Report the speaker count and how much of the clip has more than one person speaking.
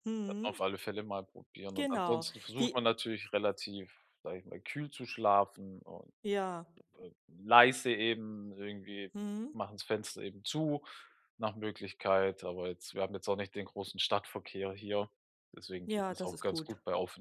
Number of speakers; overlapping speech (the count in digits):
2, about 13%